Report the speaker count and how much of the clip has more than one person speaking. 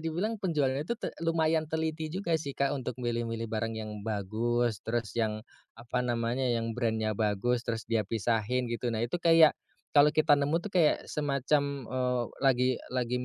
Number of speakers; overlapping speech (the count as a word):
one, no overlap